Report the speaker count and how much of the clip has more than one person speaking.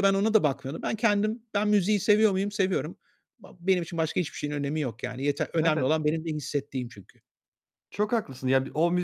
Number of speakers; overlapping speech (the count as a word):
two, about 4%